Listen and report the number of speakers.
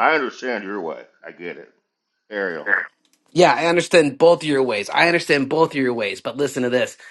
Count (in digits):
2